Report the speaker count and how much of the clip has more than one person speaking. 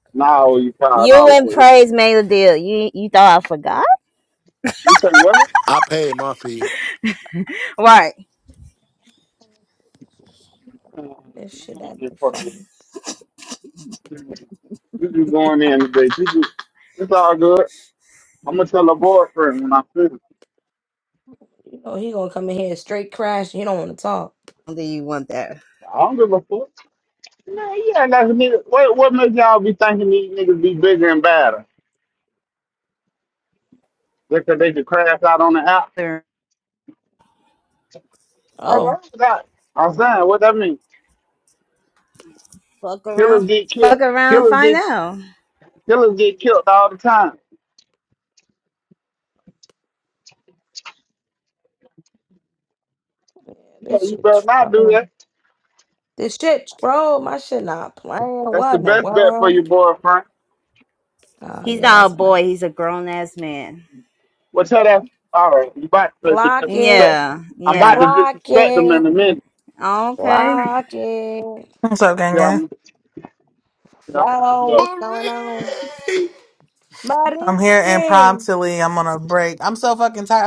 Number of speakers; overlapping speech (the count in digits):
5, about 13%